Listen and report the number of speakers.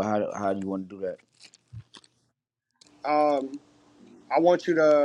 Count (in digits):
2